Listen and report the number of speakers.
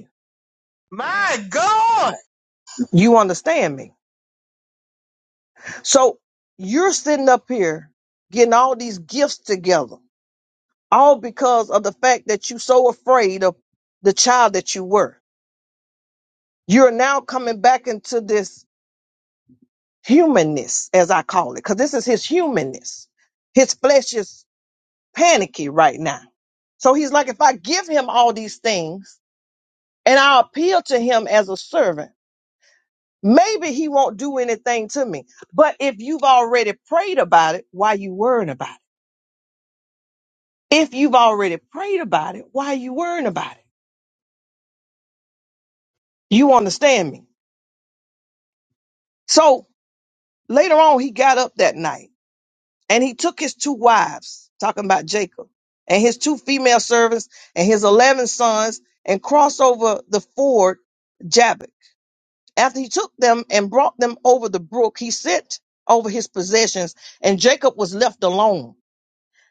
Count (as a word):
two